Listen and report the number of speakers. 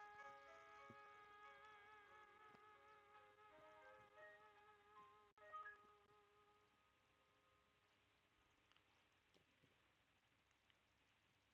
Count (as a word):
zero